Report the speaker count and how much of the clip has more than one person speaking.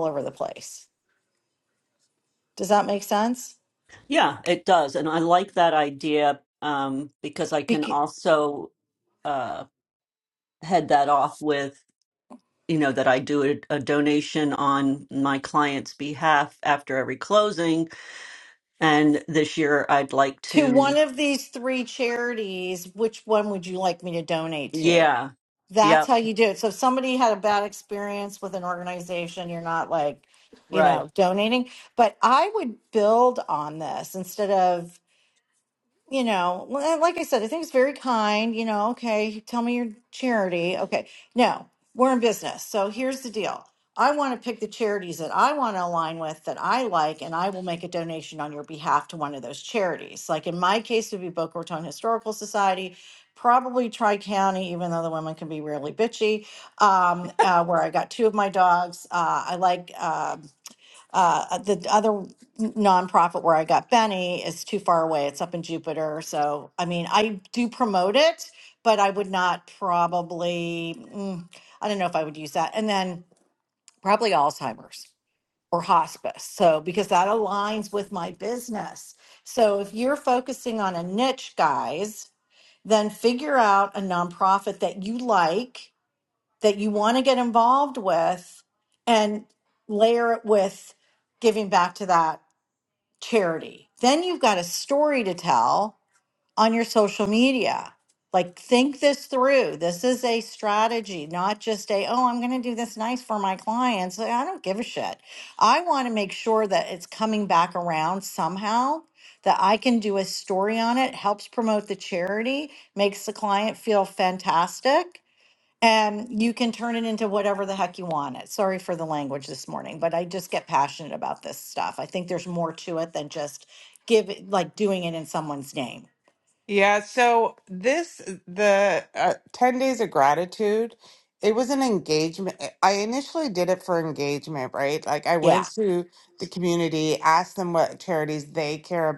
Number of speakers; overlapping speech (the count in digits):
3, about 1%